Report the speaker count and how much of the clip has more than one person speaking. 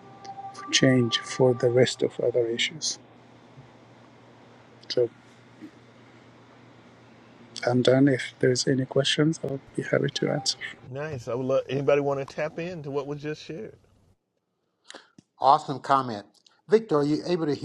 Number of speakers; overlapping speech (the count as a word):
three, no overlap